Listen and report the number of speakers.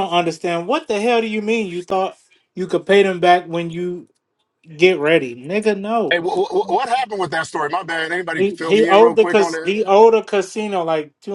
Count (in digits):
2